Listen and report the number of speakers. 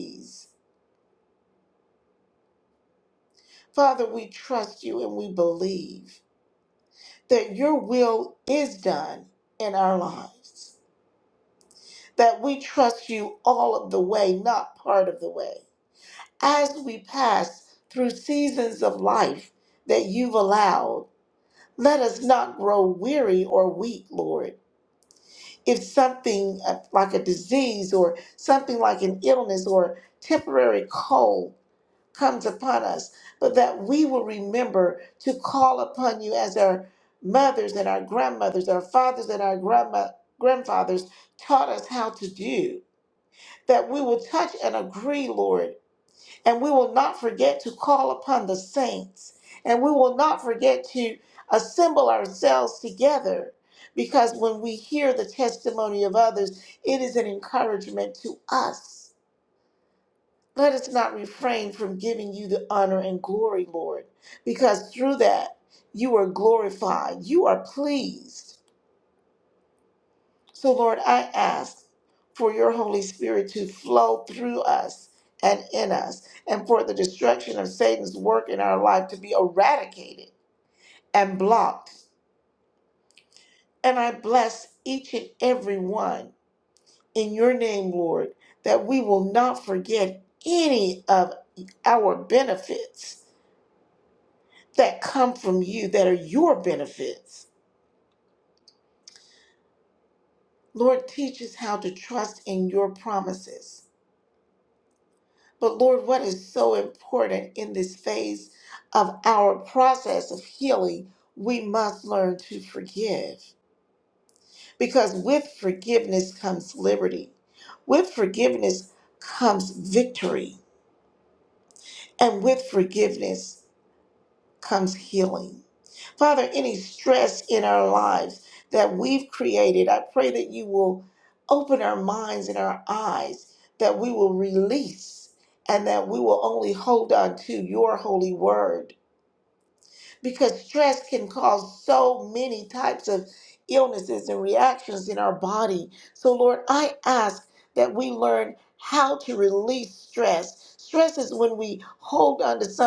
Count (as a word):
one